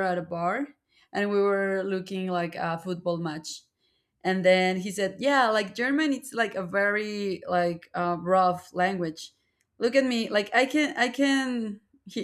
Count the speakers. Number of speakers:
1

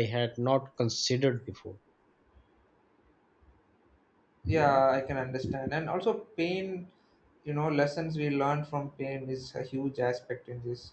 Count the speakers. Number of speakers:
2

